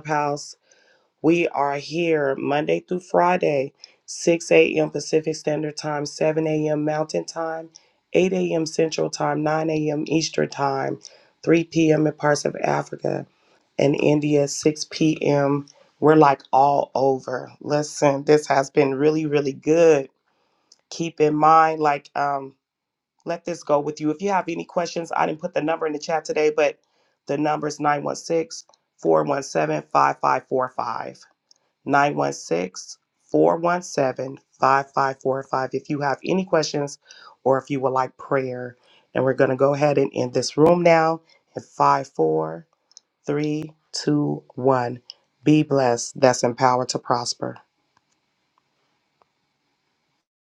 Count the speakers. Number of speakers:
1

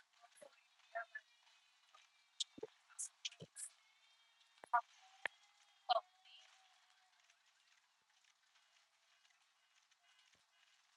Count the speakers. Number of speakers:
0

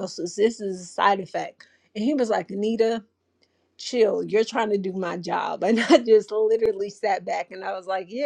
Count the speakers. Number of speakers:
1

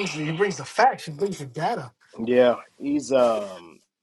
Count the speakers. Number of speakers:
2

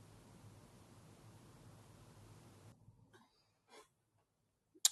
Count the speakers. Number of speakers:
0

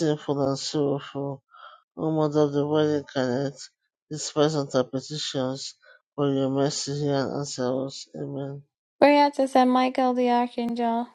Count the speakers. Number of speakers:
2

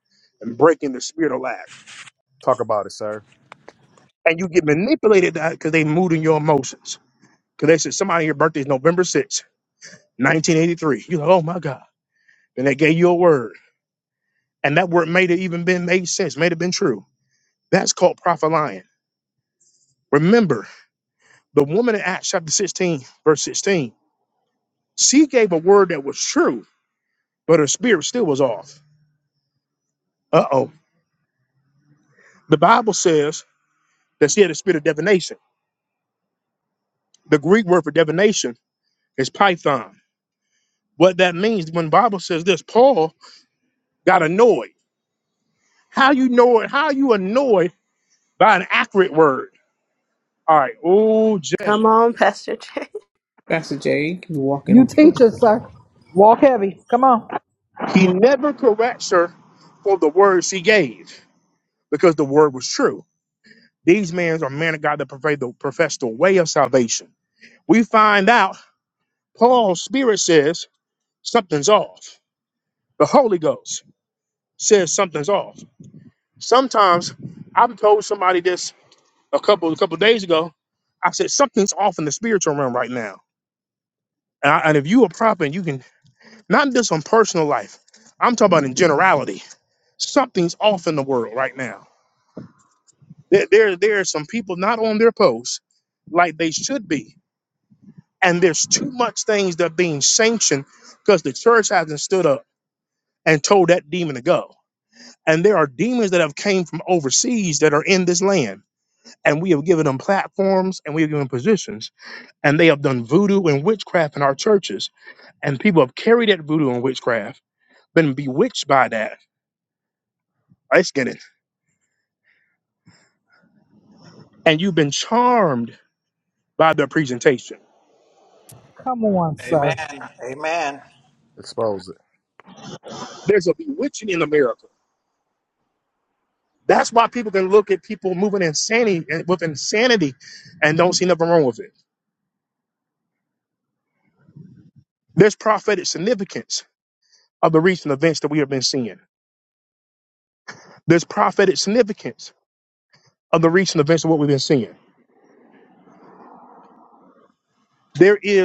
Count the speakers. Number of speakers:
6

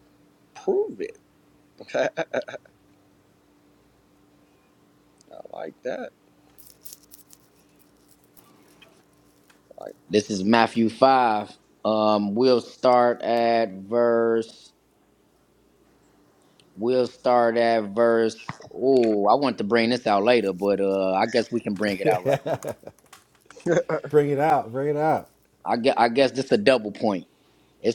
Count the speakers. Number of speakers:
3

